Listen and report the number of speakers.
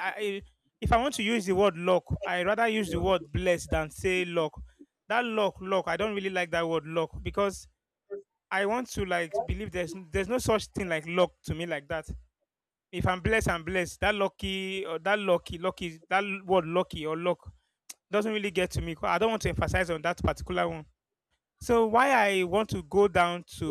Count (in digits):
1